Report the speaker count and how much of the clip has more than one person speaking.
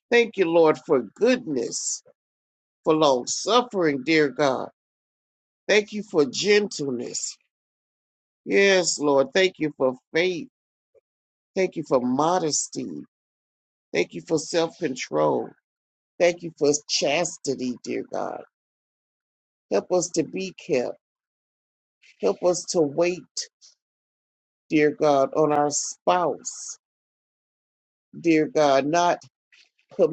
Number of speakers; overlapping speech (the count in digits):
1, no overlap